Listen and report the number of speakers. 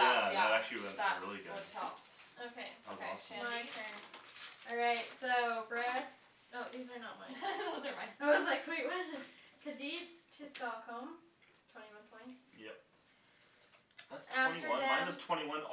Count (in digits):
3